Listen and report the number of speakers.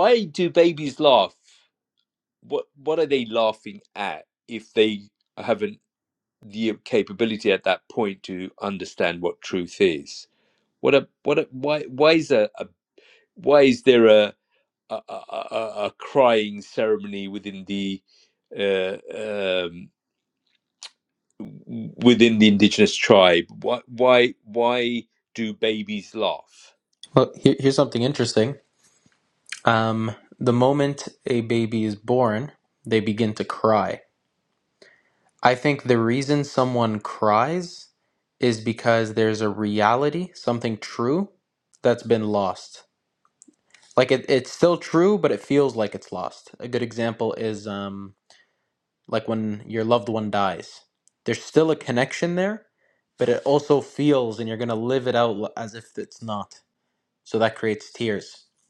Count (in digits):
2